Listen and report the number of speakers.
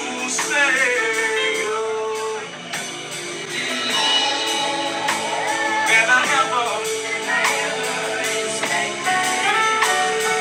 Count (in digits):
0